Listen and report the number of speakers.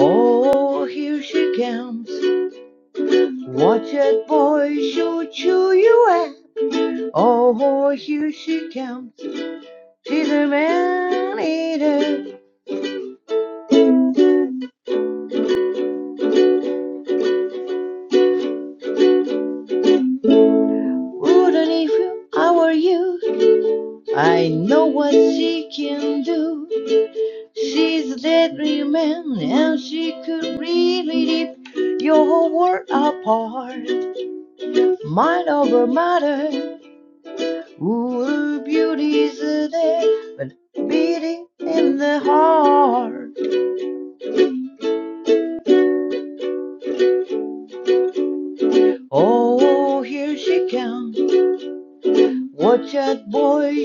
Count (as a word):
one